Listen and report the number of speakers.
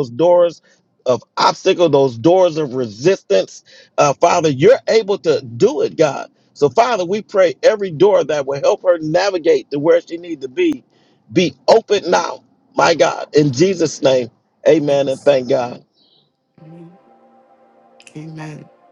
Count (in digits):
2